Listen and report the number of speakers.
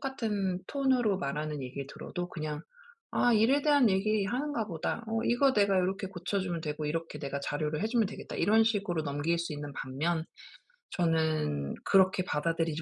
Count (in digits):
1